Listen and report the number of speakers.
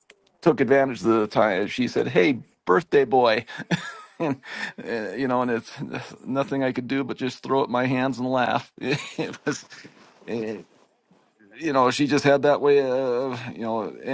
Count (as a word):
one